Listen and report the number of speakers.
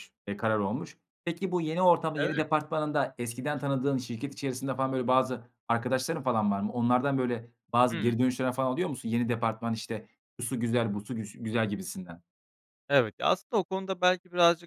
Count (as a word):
two